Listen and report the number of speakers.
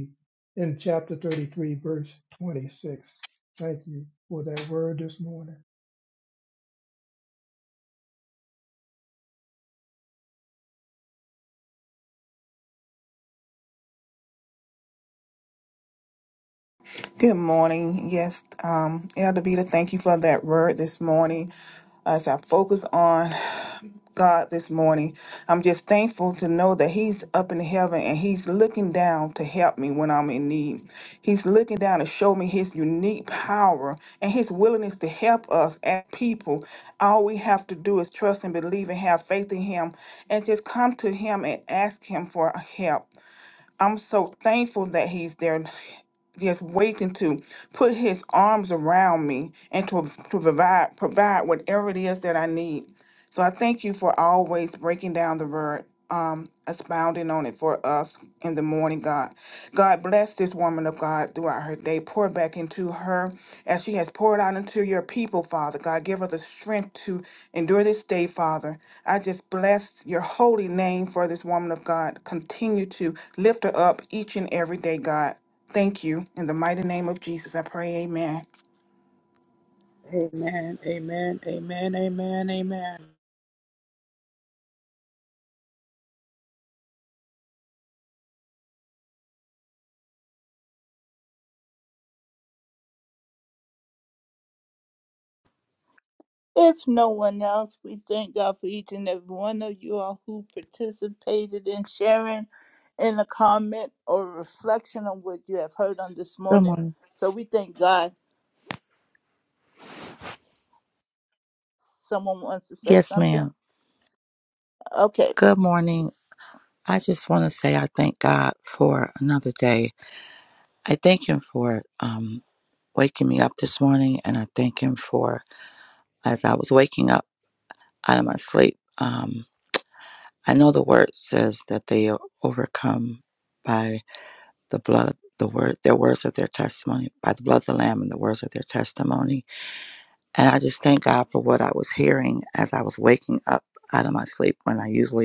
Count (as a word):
five